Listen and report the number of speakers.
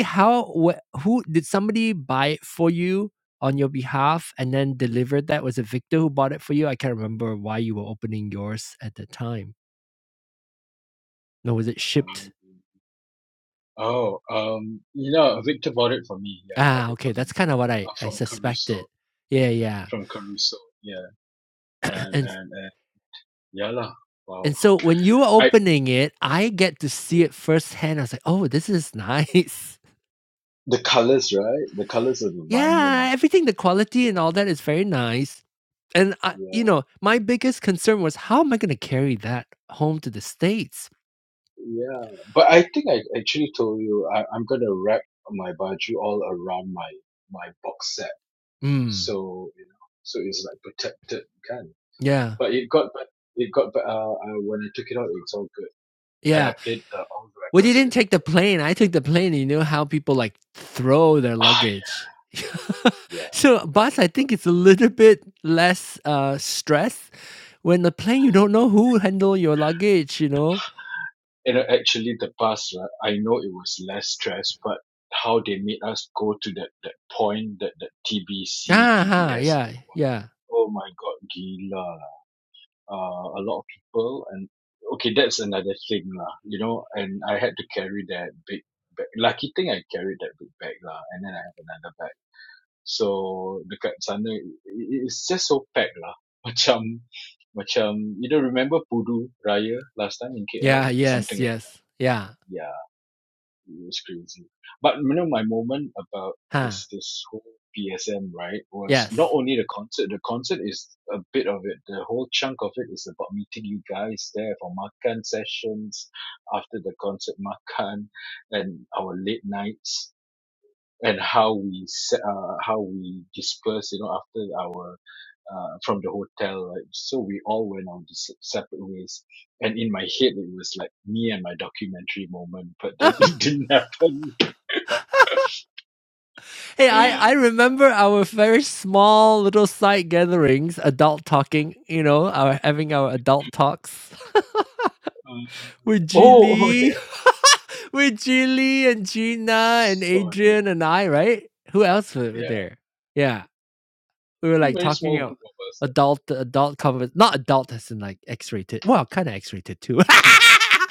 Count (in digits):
2